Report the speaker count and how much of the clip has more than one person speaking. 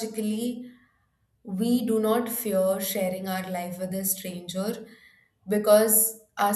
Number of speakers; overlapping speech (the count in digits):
1, no overlap